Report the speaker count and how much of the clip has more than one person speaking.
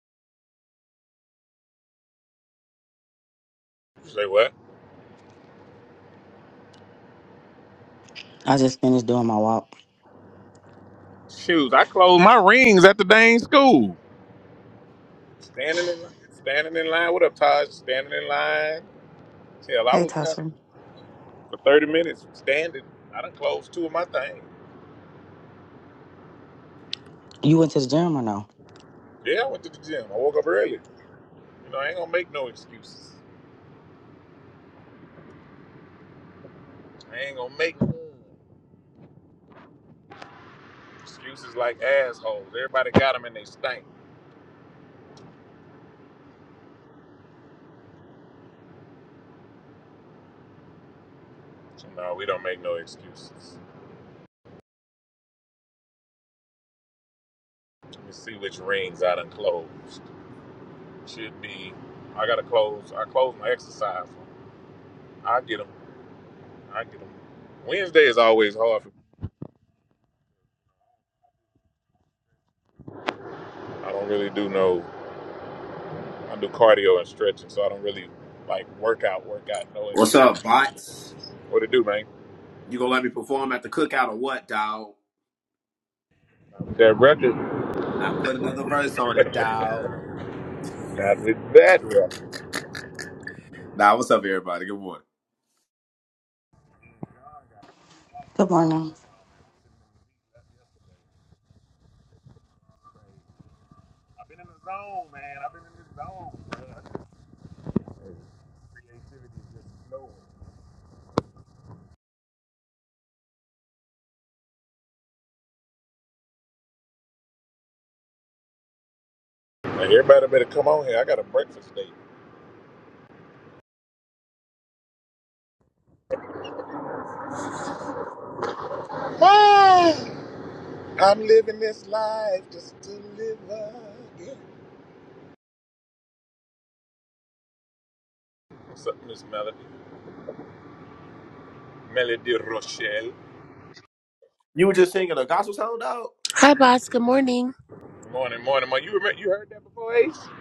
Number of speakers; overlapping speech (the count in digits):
4, under 1%